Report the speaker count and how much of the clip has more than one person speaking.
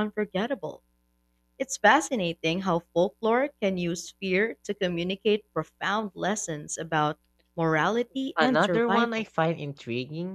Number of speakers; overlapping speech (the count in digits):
2, about 8%